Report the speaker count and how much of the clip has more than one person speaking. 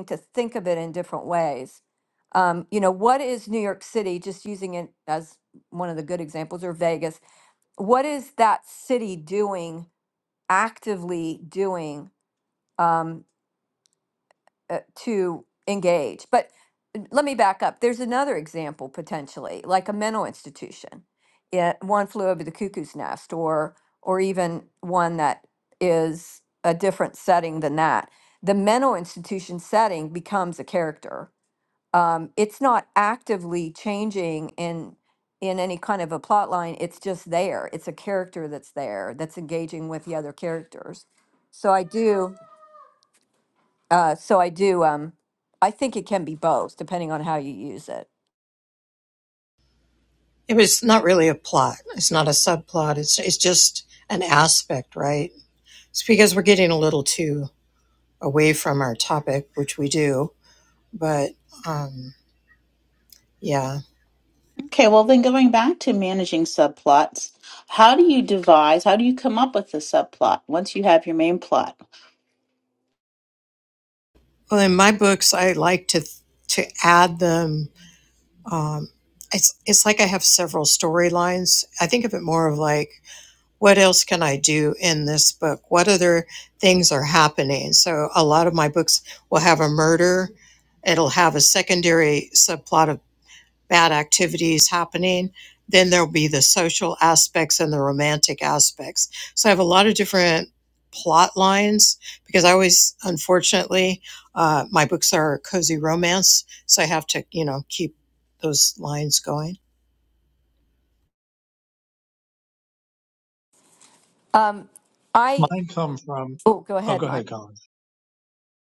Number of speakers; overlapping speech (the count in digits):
4, under 1%